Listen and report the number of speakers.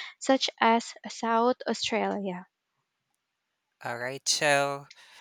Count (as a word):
two